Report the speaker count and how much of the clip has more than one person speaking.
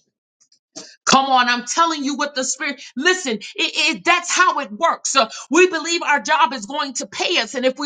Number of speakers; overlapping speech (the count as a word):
one, no overlap